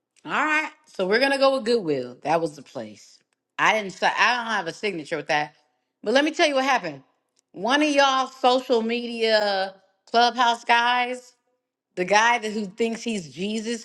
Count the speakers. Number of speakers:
1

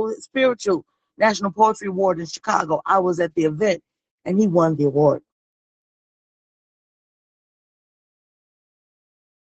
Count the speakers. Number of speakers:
1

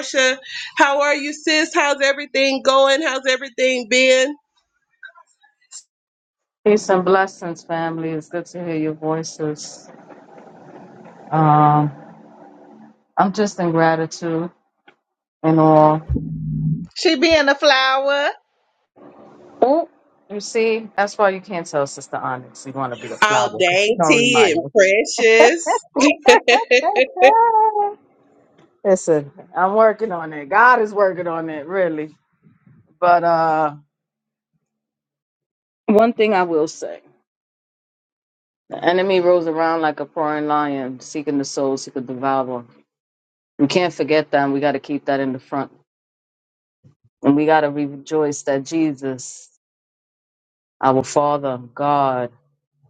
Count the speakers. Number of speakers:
3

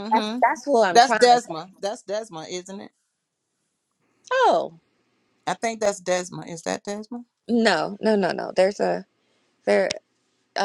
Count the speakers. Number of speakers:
2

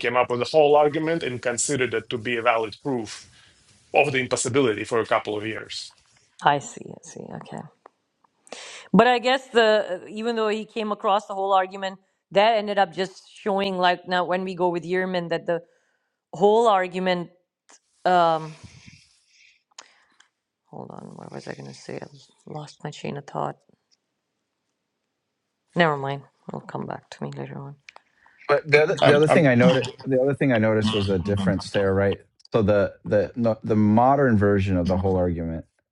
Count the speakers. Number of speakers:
3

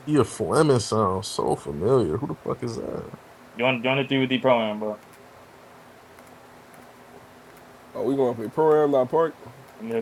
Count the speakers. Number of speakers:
3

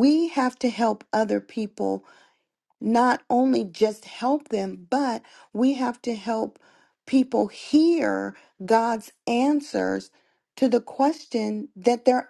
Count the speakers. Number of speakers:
1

